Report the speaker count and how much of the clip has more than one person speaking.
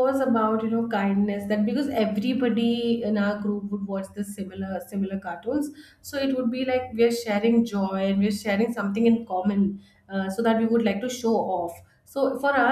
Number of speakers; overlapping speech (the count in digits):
1, no overlap